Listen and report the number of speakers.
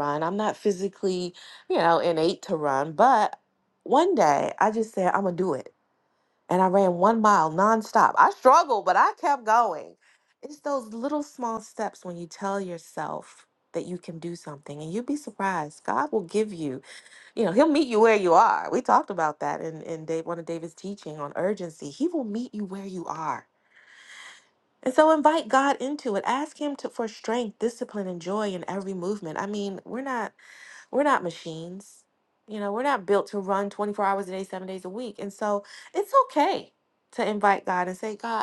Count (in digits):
1